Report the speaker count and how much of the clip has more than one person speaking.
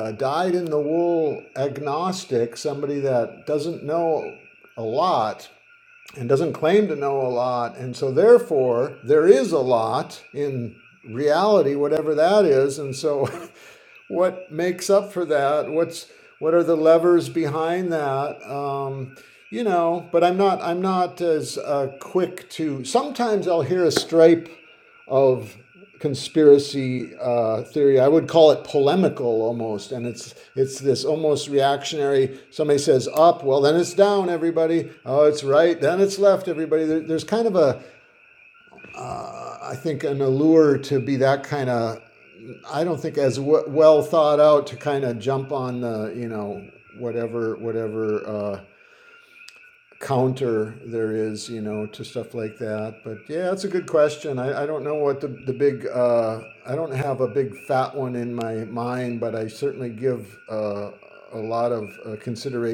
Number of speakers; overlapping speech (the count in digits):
1, no overlap